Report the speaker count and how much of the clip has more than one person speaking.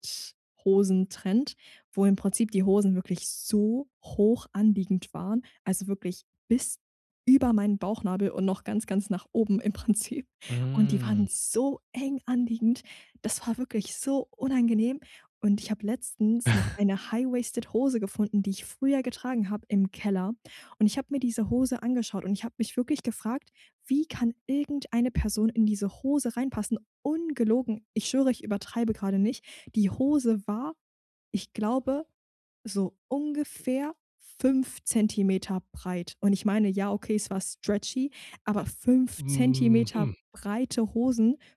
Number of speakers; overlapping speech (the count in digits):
2, about 3%